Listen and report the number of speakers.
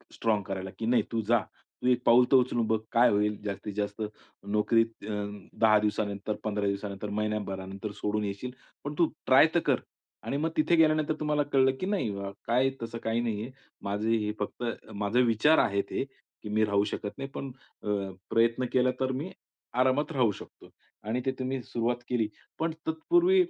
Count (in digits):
1